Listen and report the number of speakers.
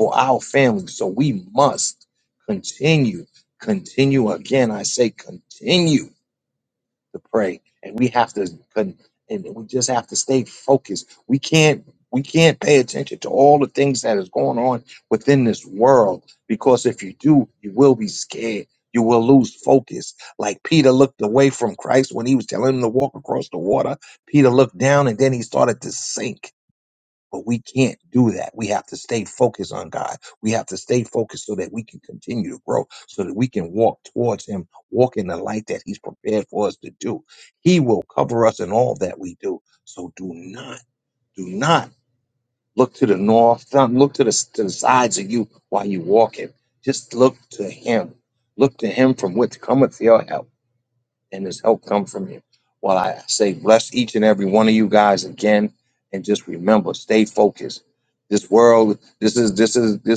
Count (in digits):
1